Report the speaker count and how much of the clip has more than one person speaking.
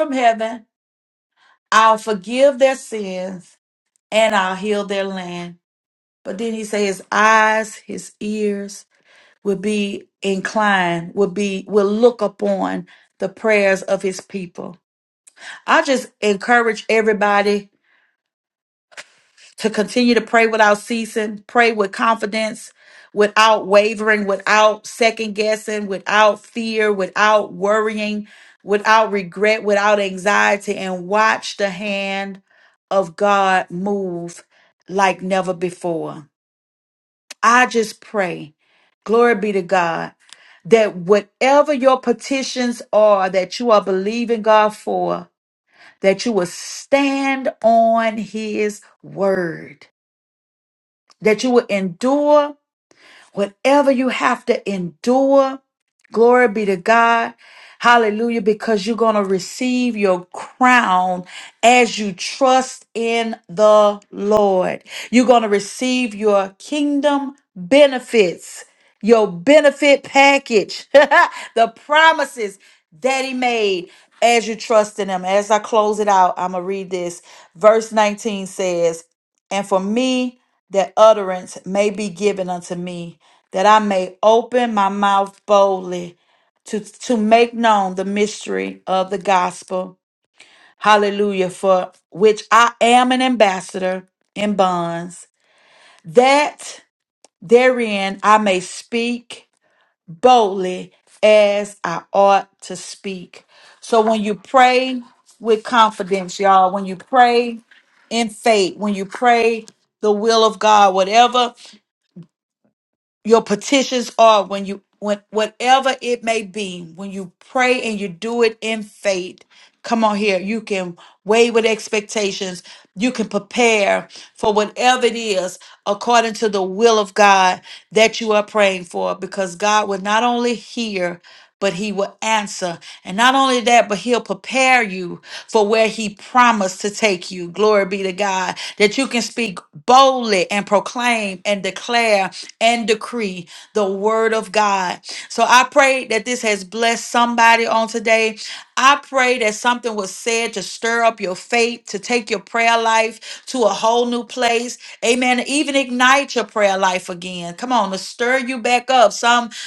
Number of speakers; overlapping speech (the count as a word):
one, no overlap